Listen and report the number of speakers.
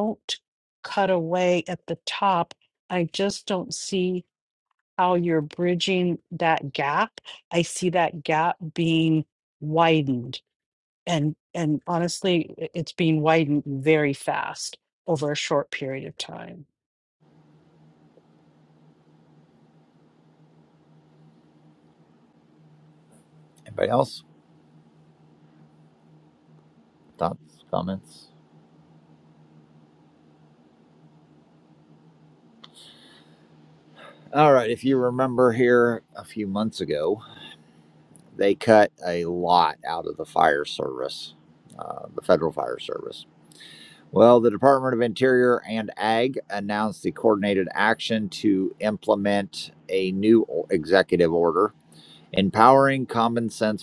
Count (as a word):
two